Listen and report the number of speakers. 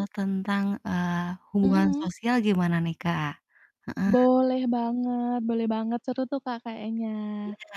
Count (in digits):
2